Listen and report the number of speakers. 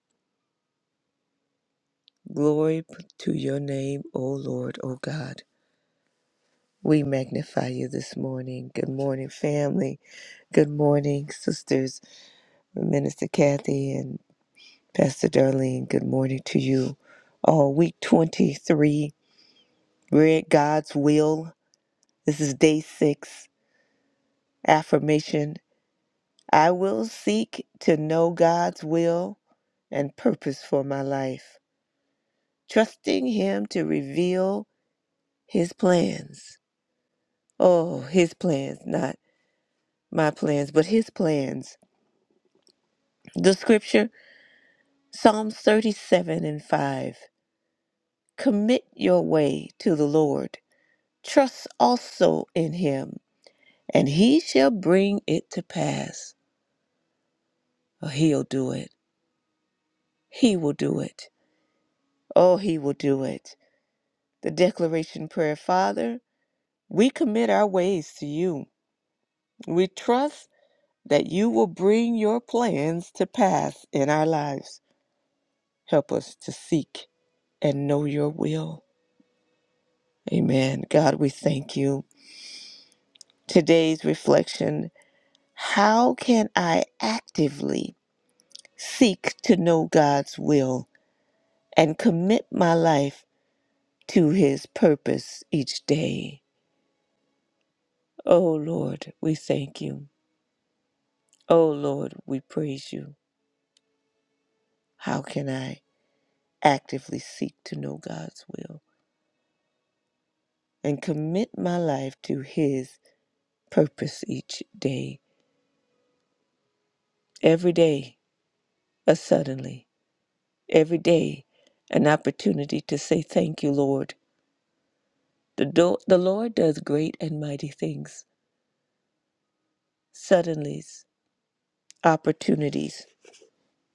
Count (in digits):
1